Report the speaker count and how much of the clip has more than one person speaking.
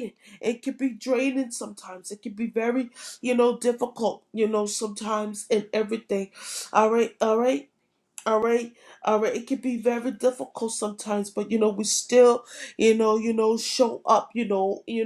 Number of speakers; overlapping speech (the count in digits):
1, no overlap